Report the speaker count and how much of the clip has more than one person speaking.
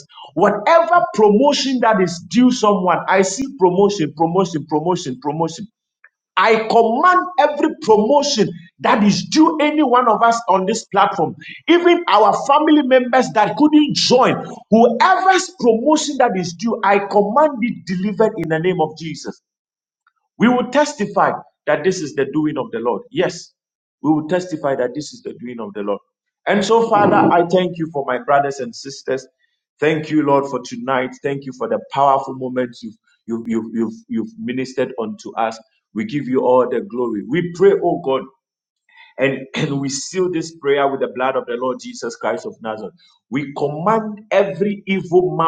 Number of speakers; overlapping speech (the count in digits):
1, no overlap